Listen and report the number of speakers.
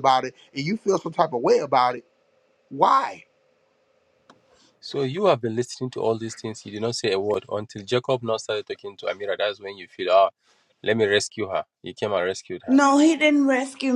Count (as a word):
three